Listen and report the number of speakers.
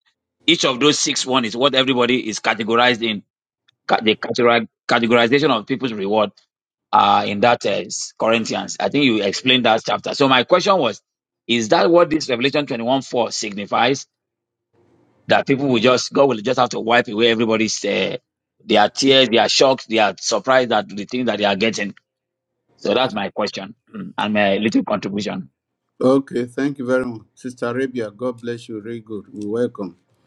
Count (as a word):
two